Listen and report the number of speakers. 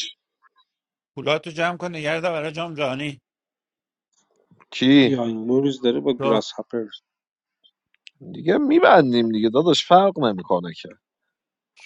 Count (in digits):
3